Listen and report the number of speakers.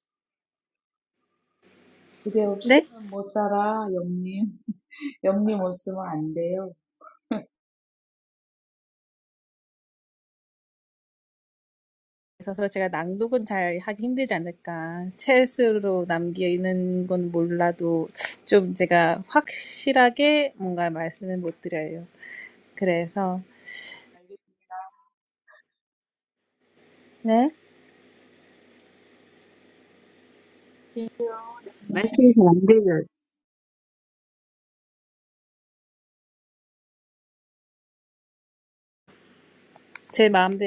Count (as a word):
three